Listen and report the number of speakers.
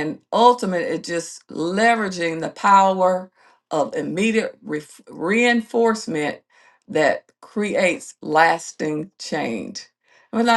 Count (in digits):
1